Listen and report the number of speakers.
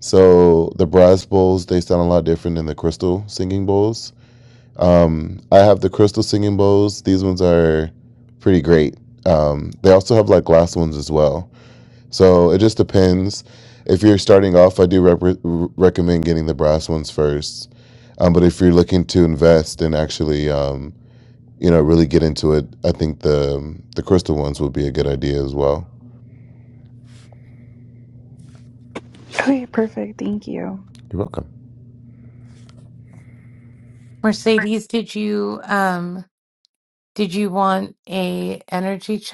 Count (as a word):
three